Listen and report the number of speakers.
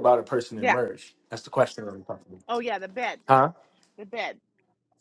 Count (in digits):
2